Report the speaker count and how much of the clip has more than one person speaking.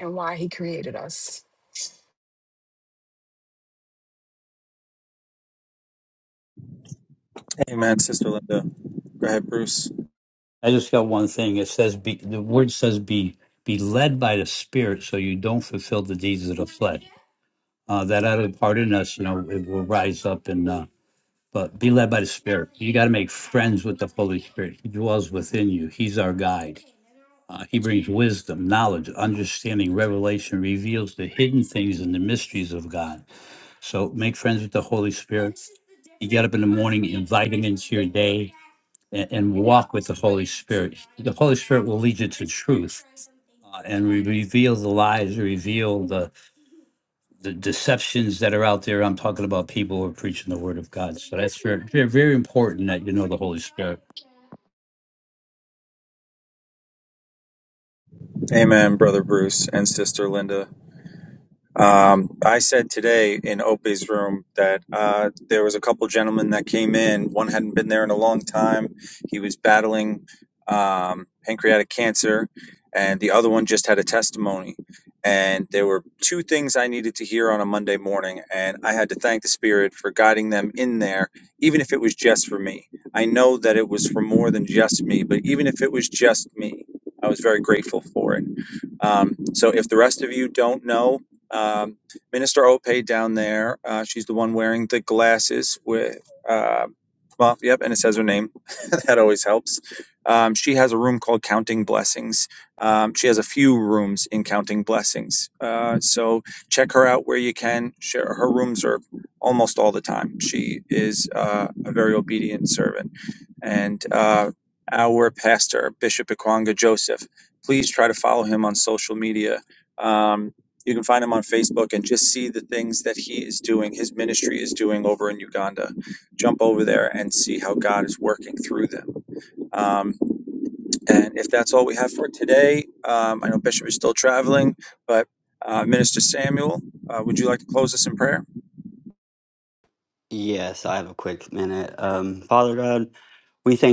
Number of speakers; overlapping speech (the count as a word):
four, no overlap